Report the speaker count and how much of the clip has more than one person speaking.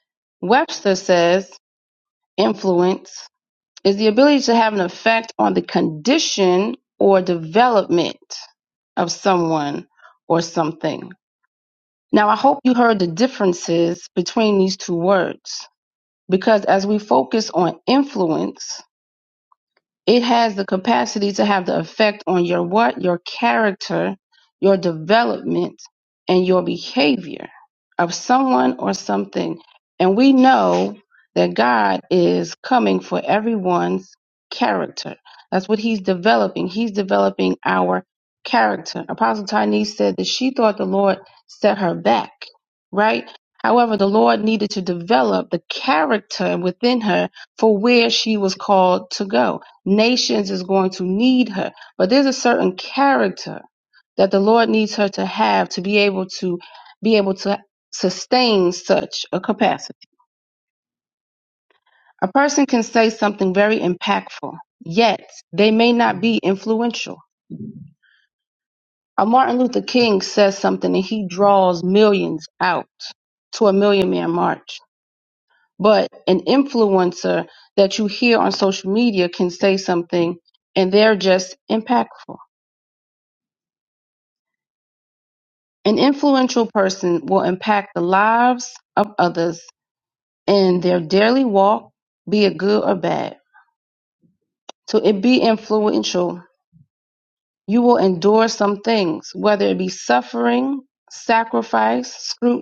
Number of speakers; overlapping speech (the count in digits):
1, no overlap